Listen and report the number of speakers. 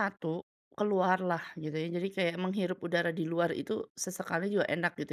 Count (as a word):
one